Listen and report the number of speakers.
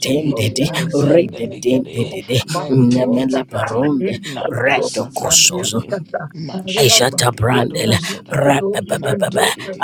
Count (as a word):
three